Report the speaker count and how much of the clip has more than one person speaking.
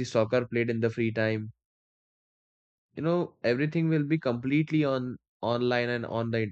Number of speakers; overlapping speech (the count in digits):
1, no overlap